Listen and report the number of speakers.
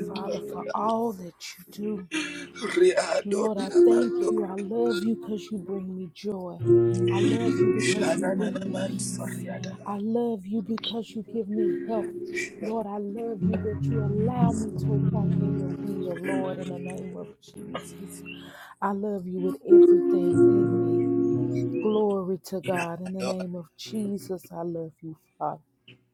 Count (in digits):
2